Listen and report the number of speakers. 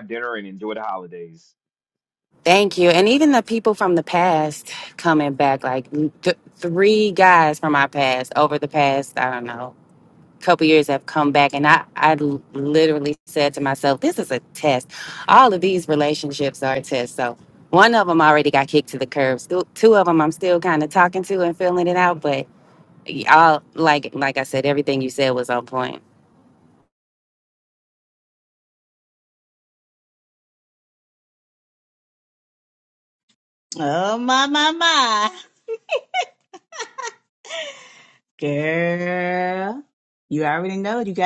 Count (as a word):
three